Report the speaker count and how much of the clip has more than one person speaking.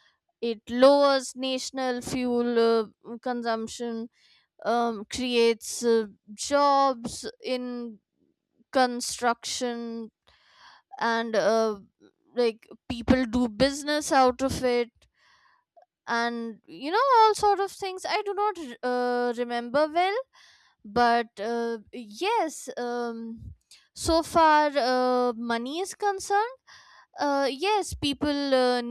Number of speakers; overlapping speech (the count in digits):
1, no overlap